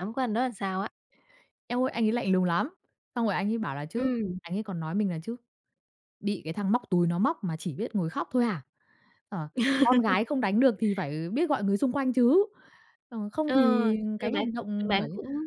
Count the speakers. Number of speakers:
two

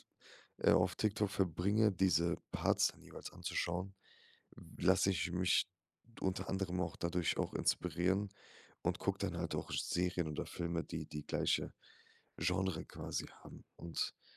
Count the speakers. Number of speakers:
one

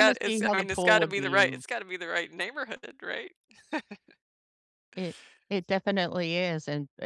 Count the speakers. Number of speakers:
two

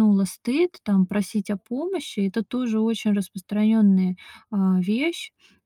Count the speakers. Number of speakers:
one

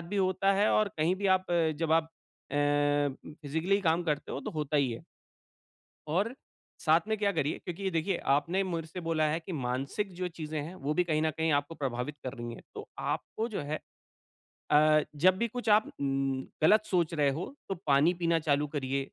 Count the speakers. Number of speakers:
one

